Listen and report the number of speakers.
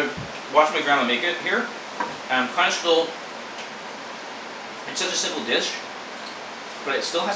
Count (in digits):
1